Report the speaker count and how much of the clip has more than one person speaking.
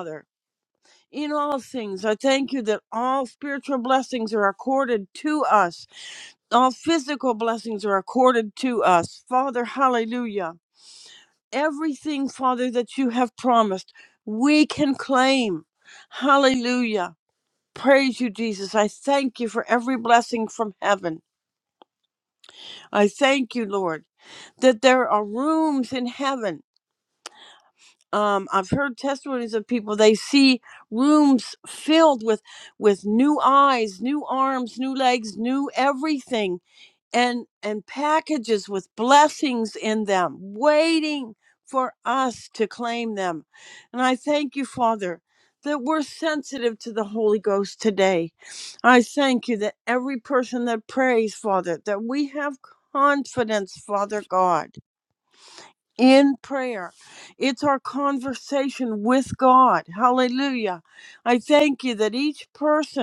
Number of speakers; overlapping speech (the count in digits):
1, no overlap